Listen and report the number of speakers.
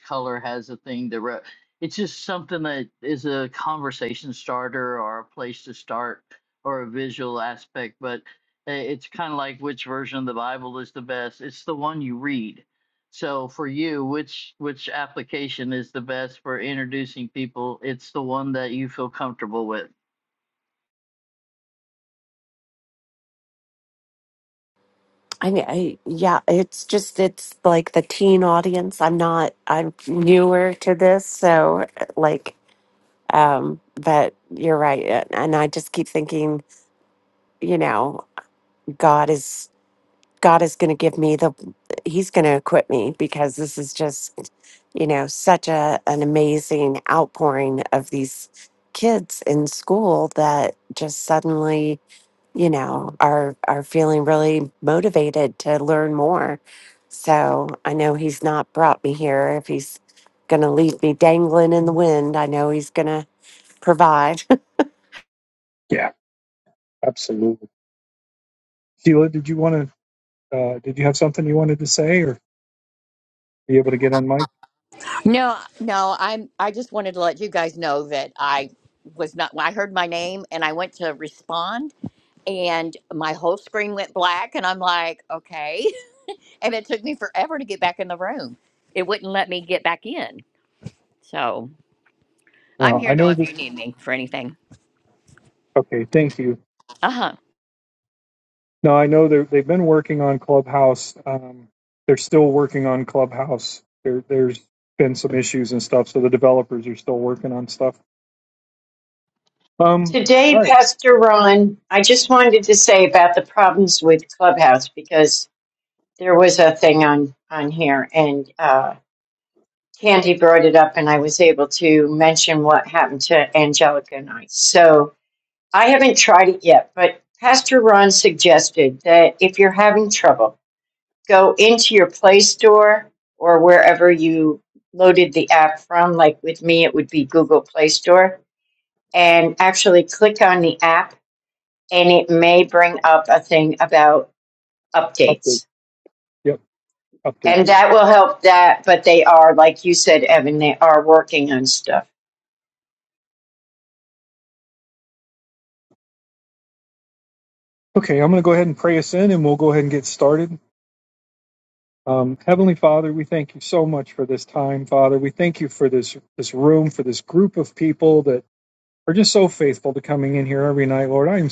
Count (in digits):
5